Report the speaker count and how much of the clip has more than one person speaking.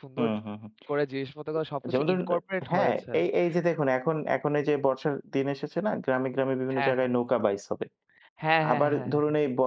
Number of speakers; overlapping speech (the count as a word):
two, about 19%